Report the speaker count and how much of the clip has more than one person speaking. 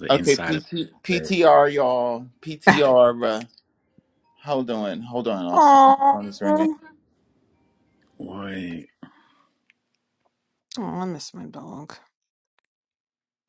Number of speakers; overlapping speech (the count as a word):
three, about 14%